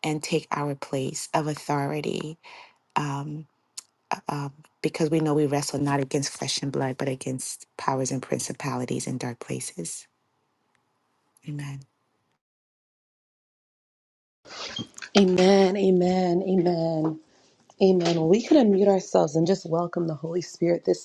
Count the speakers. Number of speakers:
2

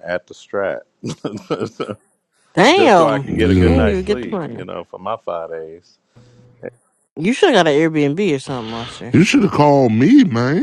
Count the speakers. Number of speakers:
3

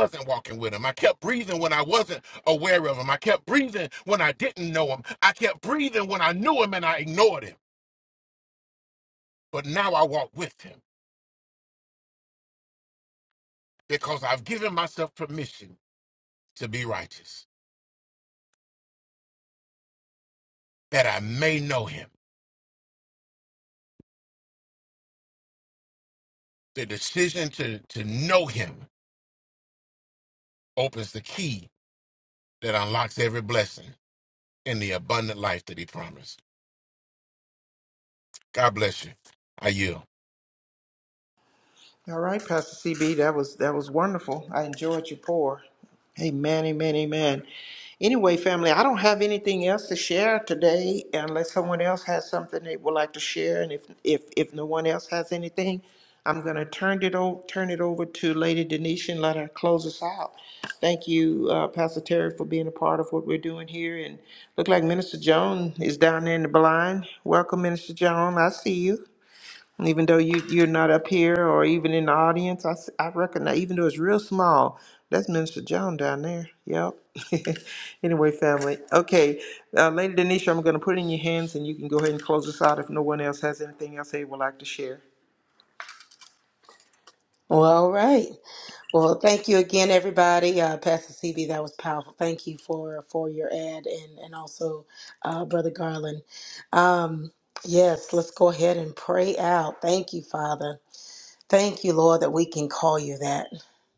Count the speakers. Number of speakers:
3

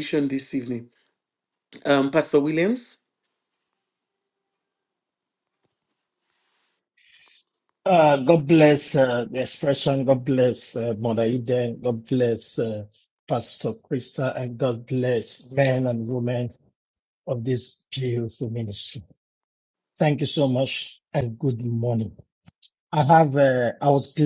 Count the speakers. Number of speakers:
2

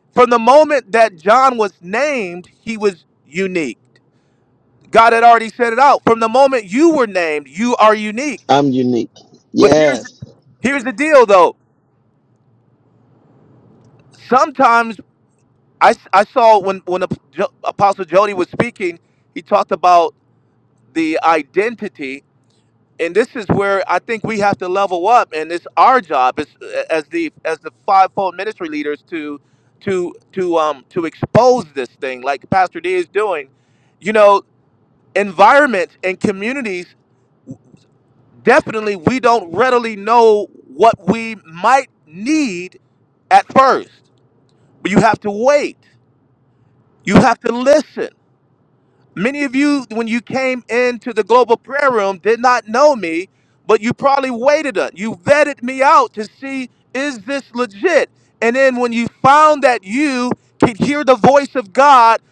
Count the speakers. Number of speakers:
2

